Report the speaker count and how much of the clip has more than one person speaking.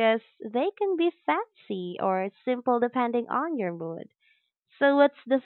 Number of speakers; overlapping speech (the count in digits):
1, no overlap